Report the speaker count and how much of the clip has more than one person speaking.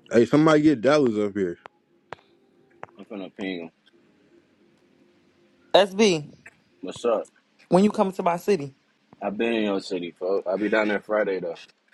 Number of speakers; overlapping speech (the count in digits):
3, no overlap